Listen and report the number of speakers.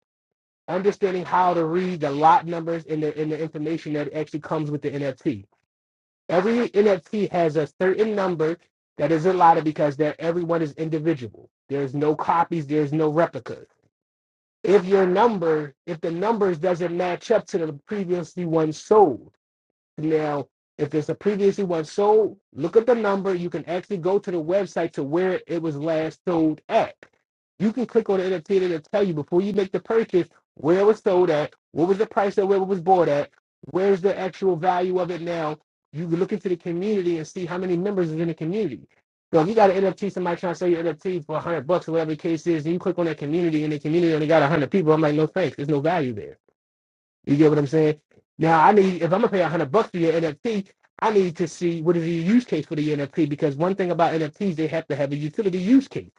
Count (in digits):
1